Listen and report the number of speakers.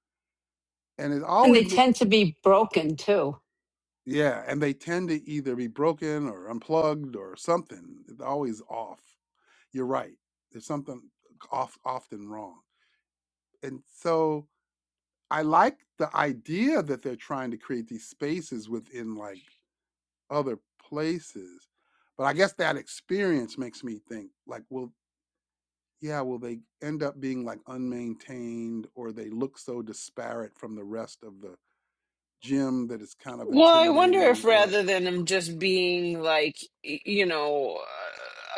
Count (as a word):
three